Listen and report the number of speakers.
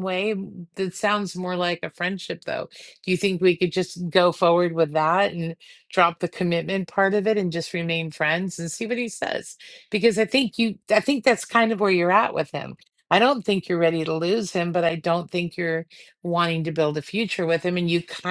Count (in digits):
1